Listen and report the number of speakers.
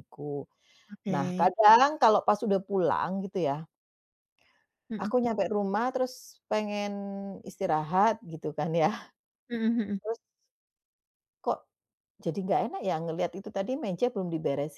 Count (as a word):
two